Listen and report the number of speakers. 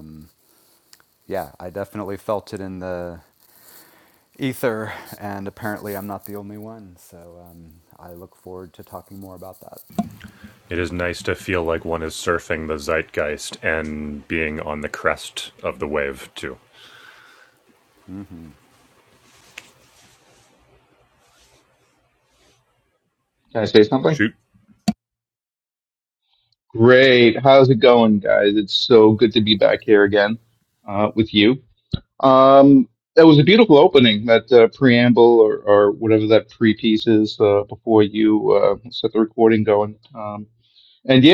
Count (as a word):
three